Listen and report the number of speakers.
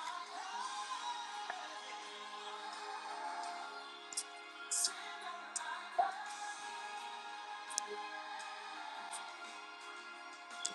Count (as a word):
zero